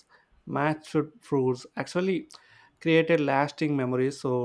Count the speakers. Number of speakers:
1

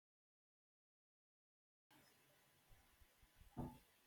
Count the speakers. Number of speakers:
0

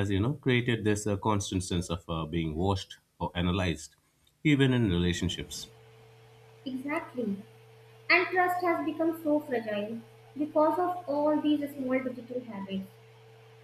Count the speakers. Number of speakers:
2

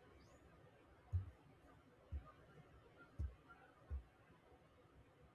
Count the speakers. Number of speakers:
0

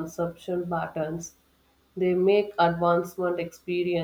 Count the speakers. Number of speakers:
1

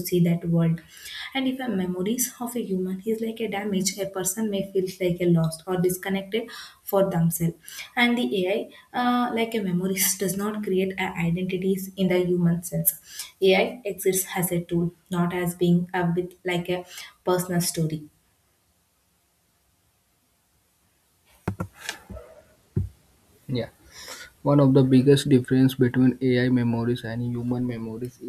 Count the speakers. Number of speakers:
2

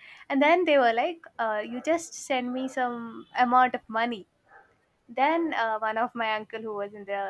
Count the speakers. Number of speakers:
1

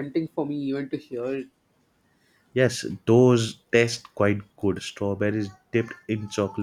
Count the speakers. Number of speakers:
2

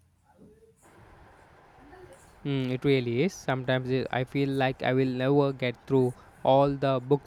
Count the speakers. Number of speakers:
1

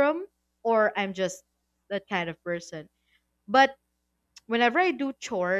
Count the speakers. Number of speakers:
1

